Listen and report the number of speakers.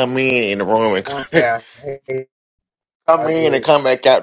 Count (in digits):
2